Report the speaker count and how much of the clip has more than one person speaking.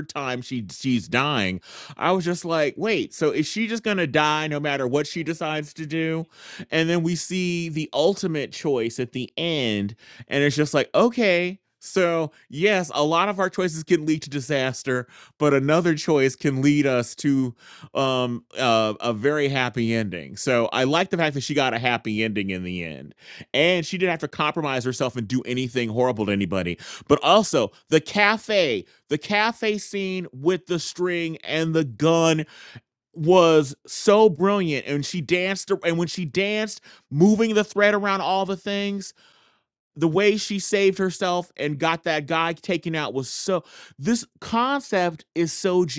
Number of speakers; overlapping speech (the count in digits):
1, no overlap